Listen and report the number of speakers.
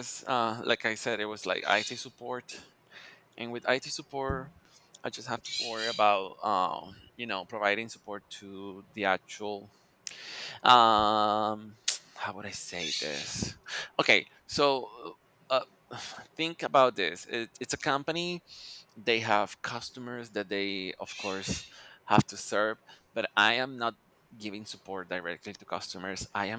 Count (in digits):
1